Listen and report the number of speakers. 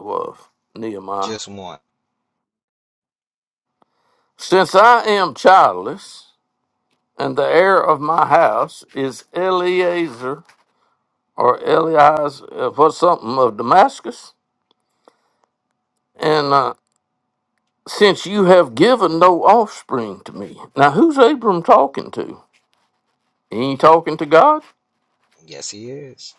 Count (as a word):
two